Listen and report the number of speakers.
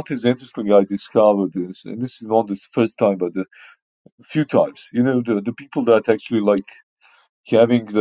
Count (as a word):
one